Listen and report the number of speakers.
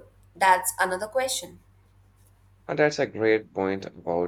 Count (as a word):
two